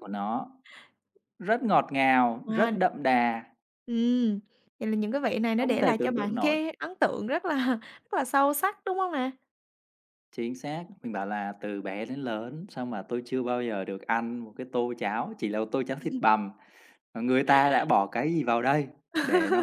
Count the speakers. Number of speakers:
two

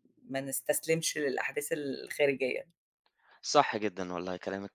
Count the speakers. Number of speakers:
two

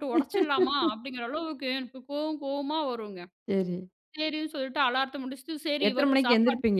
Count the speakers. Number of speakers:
two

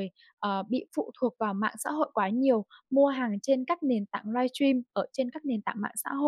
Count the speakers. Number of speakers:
one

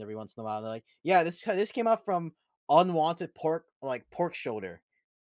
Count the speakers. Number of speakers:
one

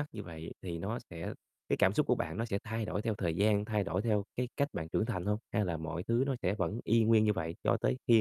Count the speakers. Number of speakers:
one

